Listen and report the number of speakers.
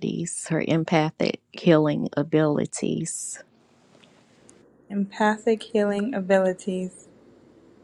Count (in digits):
2